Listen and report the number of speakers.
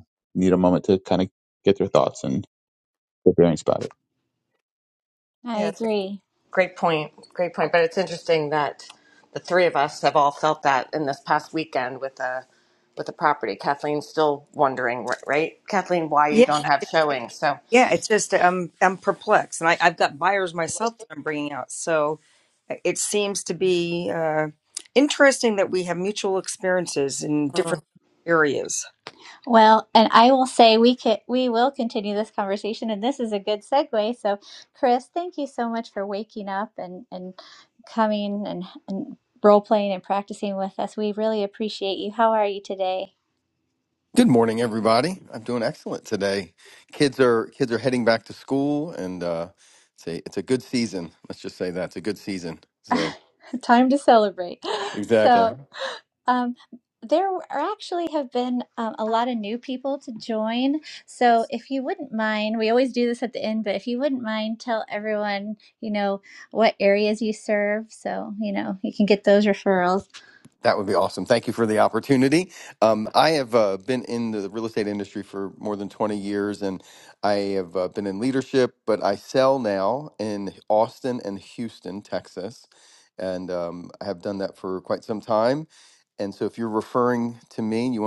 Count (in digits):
5